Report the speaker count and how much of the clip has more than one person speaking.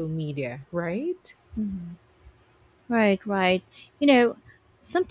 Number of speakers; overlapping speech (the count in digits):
2, no overlap